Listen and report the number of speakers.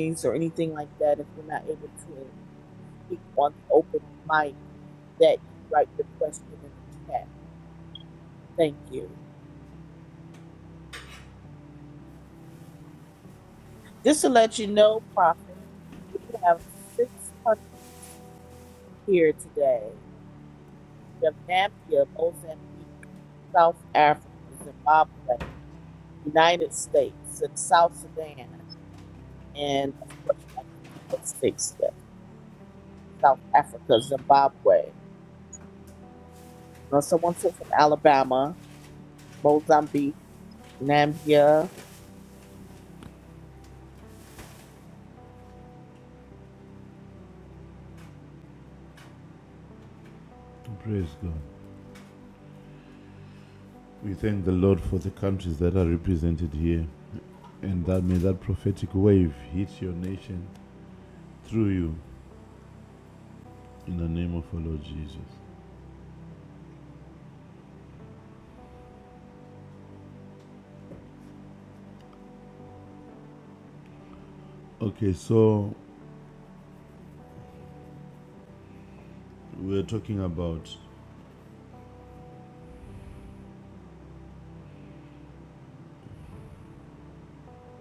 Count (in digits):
2